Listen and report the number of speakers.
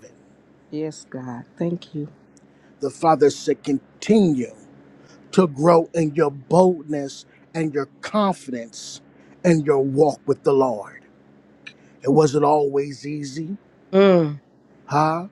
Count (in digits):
2